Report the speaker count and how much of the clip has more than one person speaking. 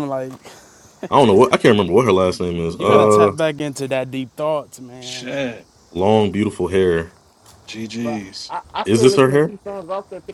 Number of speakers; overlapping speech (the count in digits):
4, about 19%